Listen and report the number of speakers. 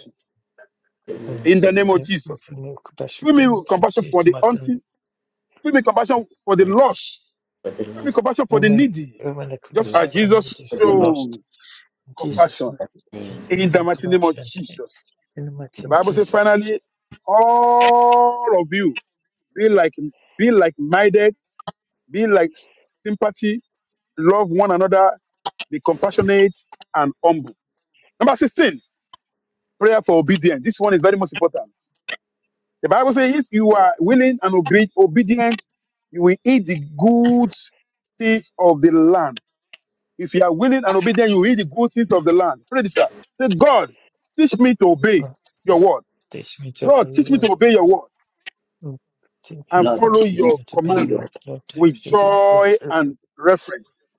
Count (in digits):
3